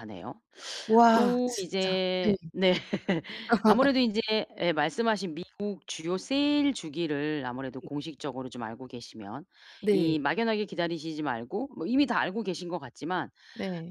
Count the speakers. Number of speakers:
two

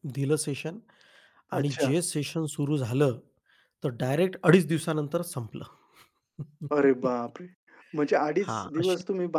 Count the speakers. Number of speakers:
two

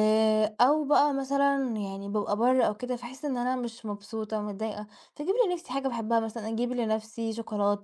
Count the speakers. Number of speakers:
one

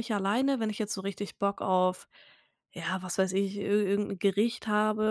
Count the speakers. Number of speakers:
one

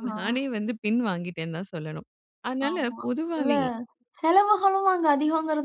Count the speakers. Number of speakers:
two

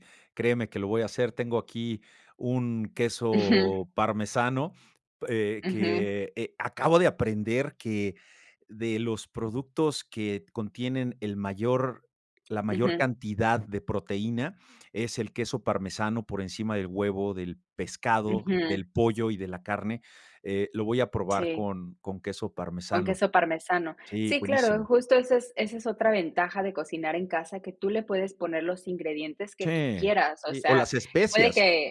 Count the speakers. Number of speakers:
two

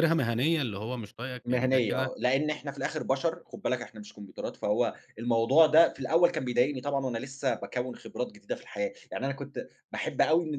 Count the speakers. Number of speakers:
two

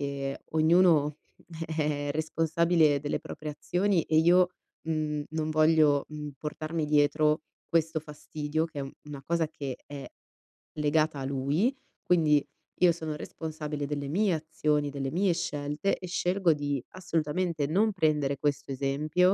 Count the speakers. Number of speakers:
one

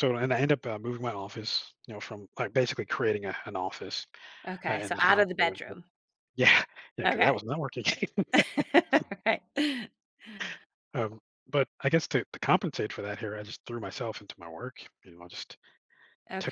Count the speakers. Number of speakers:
two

